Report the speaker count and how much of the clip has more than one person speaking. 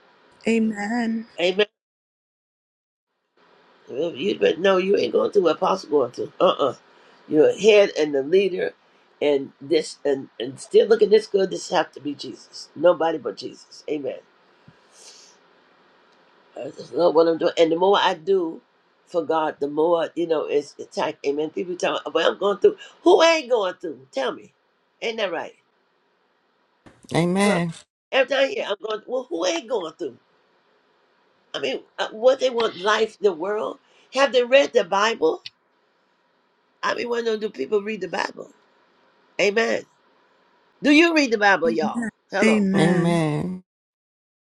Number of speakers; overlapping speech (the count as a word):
three, about 3%